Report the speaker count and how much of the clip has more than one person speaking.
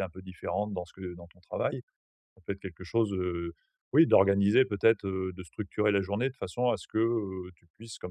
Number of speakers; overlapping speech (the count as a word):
one, no overlap